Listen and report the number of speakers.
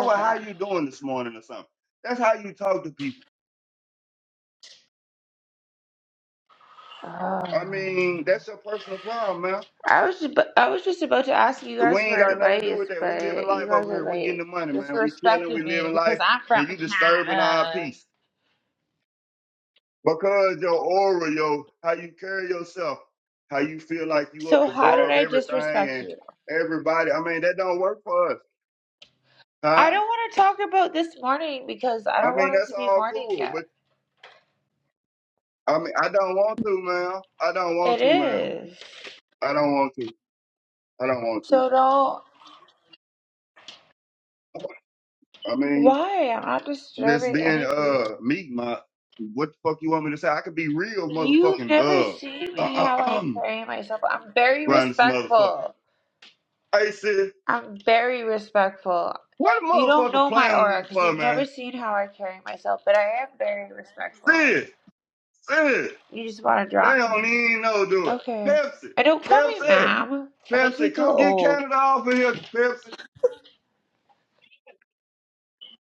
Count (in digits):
2